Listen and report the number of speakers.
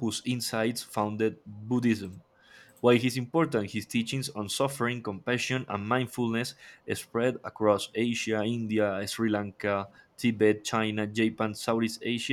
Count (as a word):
one